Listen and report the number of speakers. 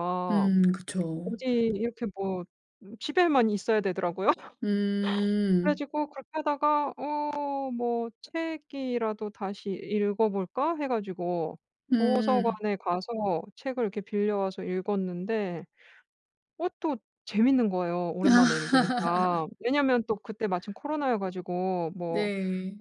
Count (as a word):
two